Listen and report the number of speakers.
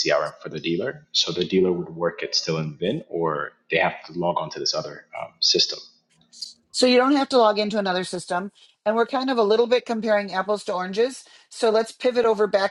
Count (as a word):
two